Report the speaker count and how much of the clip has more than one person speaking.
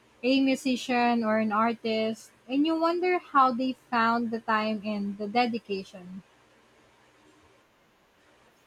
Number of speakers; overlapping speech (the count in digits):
1, no overlap